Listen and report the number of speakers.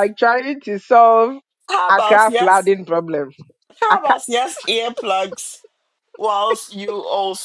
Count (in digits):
2